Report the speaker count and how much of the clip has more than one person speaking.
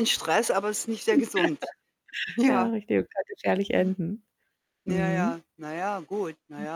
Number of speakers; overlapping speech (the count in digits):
2, about 16%